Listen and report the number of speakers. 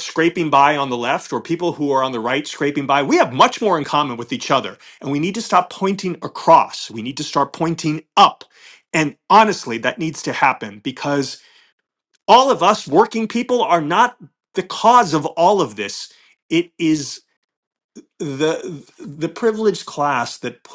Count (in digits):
1